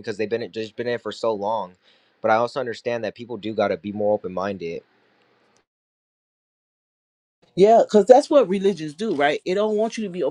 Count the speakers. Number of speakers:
2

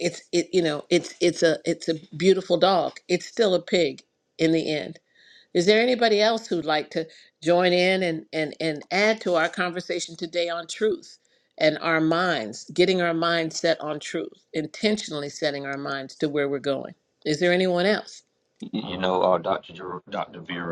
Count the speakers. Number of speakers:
2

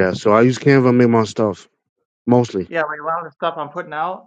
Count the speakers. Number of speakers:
2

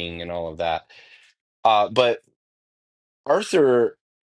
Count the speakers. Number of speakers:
1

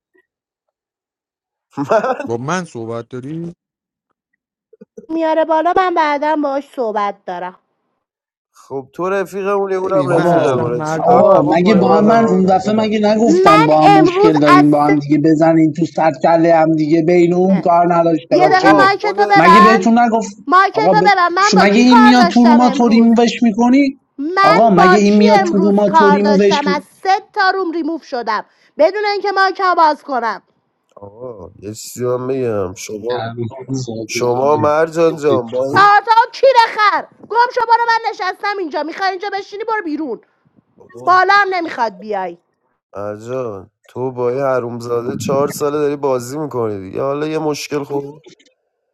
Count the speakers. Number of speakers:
4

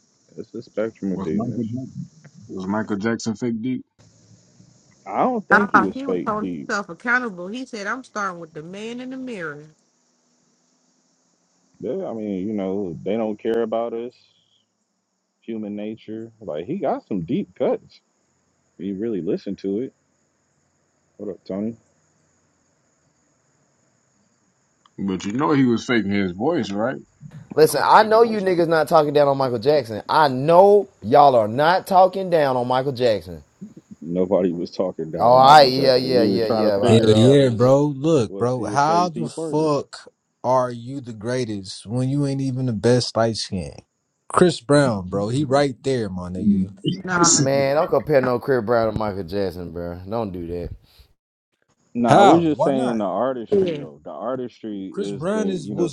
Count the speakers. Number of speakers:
5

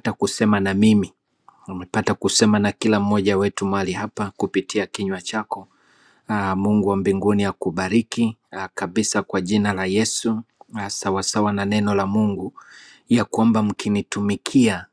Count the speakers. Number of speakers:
1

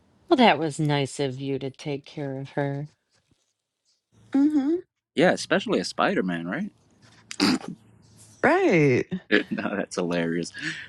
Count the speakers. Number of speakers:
3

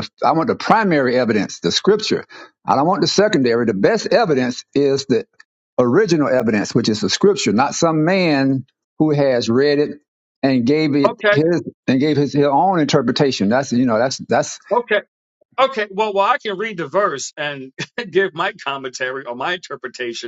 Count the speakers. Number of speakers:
2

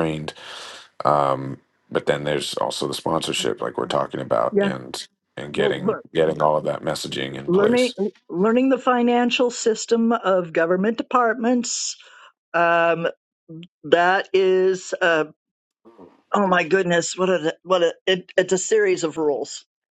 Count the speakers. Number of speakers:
2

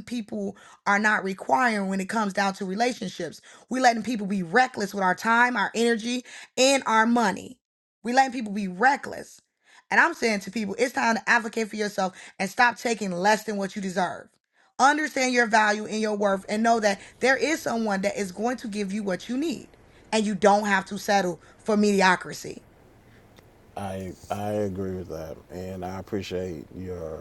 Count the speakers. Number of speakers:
2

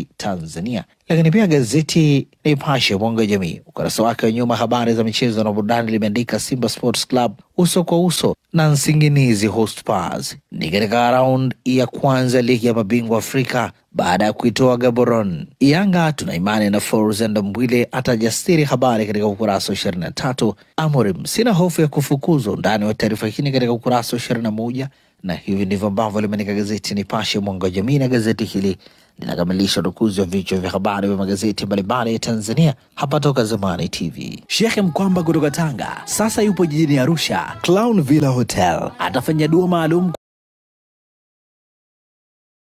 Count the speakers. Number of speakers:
1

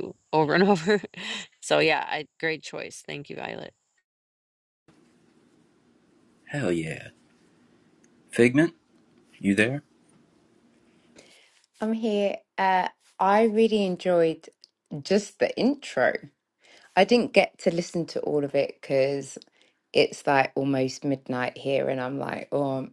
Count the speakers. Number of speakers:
3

